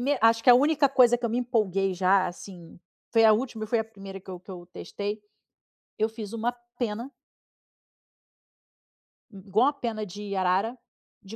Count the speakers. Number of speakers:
1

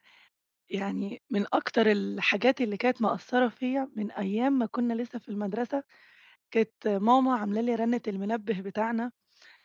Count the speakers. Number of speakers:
1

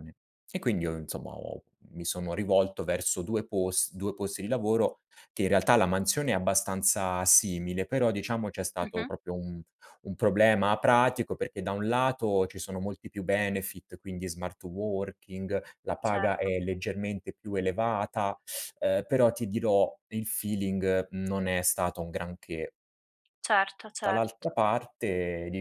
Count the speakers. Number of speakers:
2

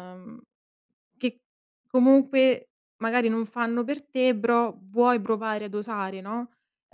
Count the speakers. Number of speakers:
1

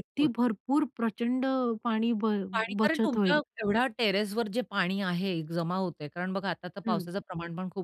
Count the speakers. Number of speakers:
2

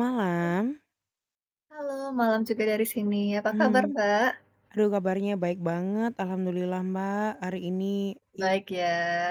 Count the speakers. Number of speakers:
2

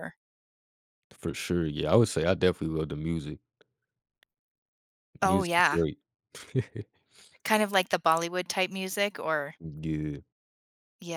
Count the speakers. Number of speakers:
2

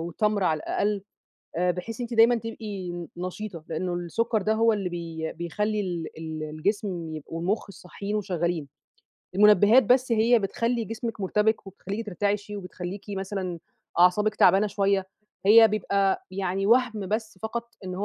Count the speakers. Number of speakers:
1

